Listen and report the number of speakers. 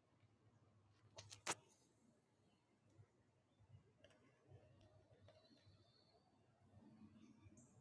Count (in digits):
0